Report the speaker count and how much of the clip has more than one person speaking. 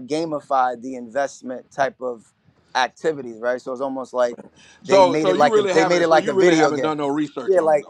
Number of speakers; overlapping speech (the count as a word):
two, about 30%